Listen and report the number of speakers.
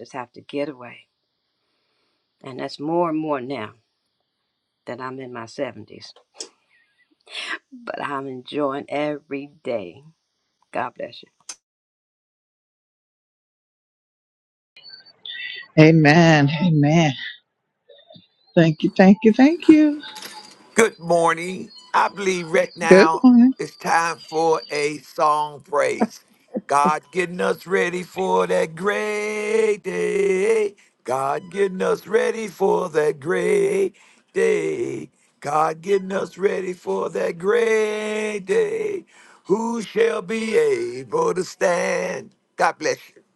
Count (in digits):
3